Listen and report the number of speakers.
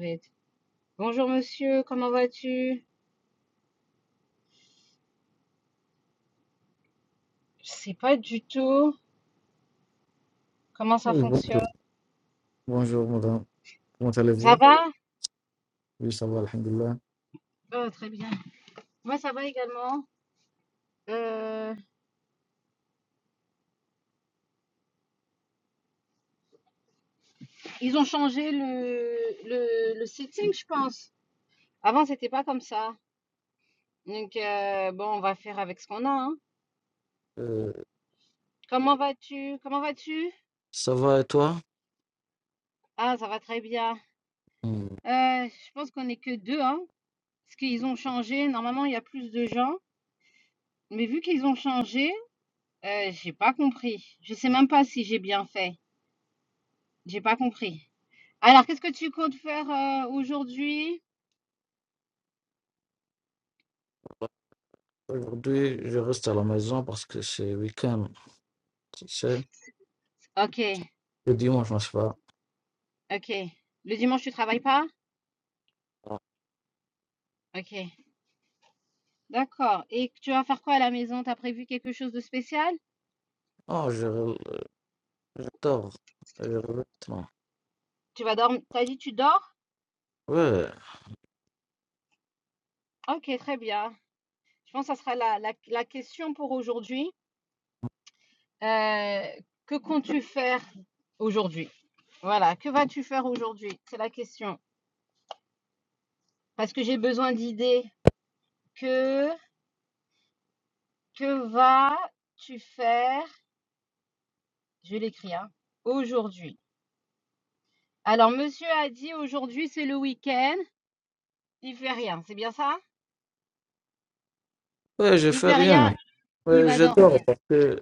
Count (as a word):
two